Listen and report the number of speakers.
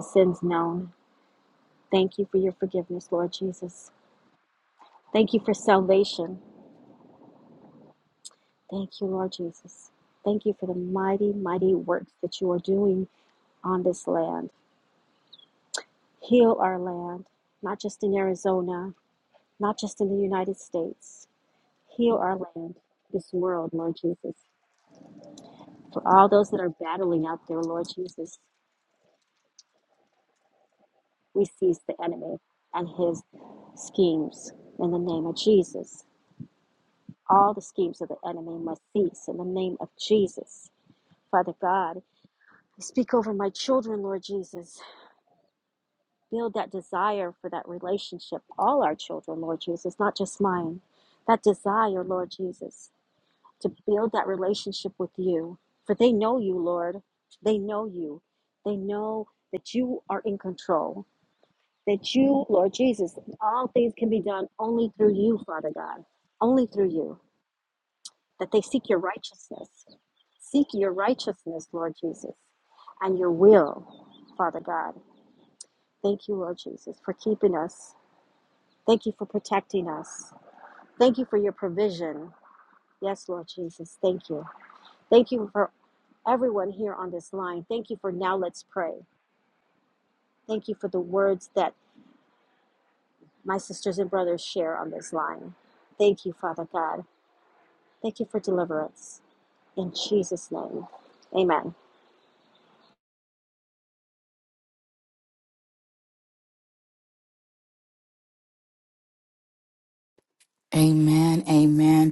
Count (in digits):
2